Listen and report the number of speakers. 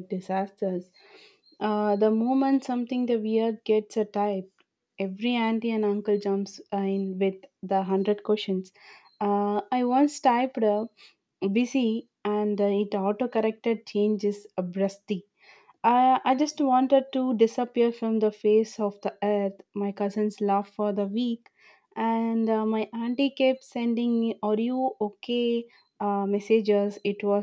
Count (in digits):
1